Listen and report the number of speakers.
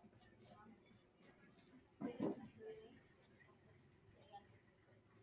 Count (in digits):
0